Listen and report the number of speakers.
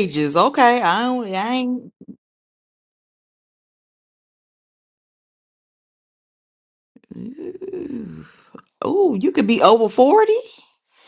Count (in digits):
1